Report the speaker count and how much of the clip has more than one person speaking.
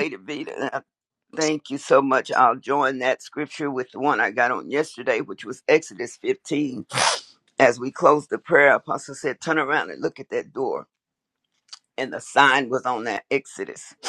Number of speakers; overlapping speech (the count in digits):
1, no overlap